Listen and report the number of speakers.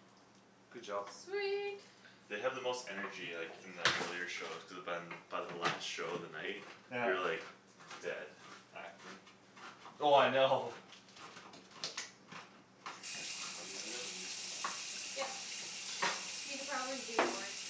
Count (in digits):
3